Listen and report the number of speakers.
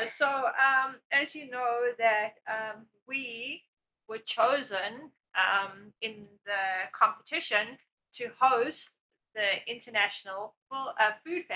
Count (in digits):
1